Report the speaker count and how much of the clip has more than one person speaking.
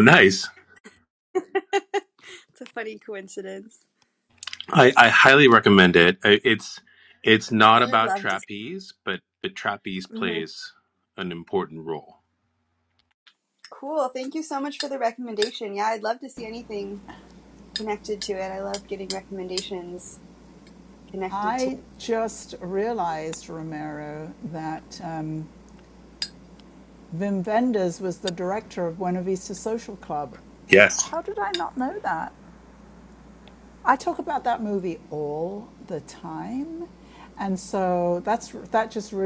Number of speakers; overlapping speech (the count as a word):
three, about 4%